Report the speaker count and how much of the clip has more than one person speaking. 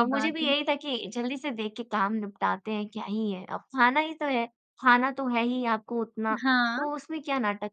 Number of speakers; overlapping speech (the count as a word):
two, about 9%